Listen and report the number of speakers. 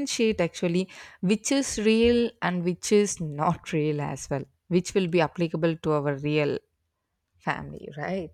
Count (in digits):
1